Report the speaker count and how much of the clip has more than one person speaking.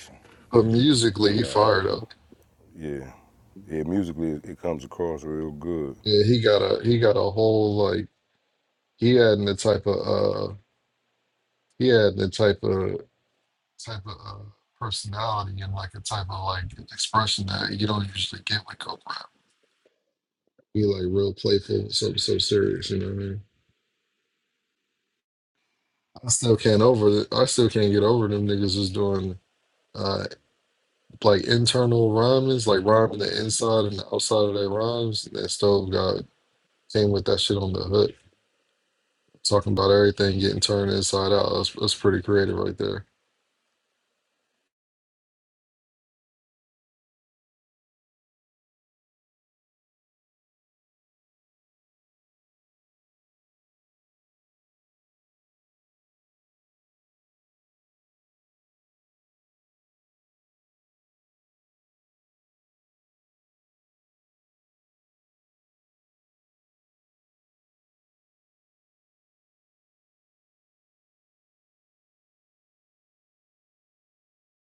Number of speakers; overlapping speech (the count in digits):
2, about 1%